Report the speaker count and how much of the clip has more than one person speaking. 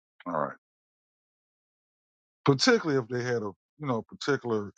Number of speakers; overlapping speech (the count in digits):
1, no overlap